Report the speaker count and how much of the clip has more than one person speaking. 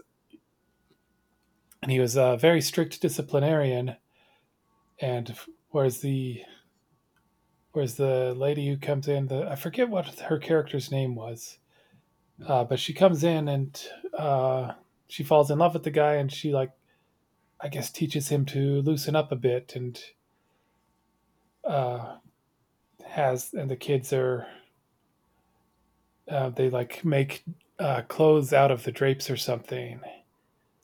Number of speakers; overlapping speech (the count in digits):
1, no overlap